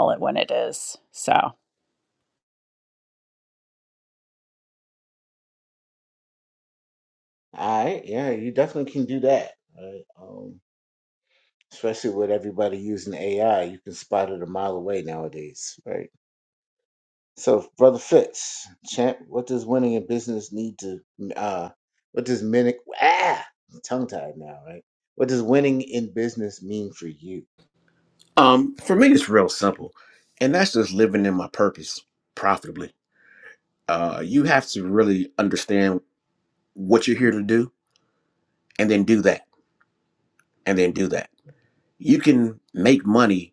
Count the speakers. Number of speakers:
3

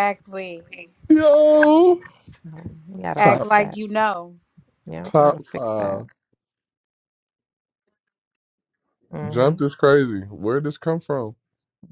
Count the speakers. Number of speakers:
3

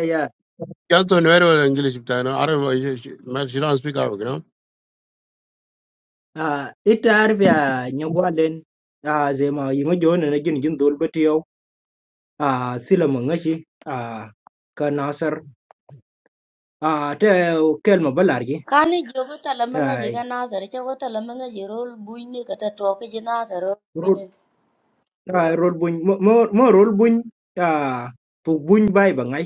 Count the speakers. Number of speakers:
3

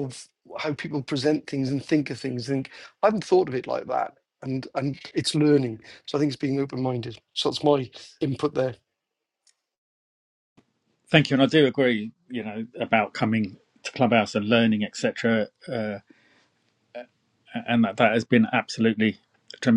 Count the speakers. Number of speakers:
2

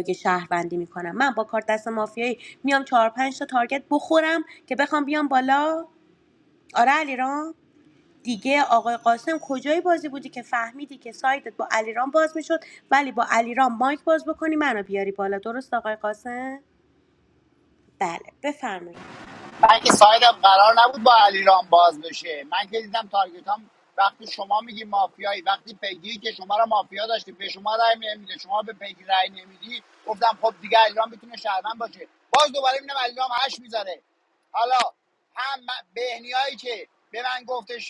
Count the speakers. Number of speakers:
2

